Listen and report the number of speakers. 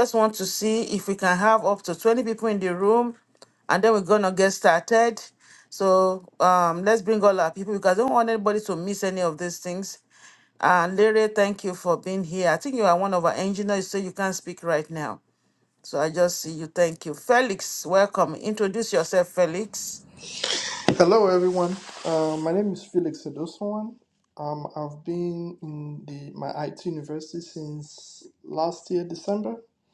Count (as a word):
two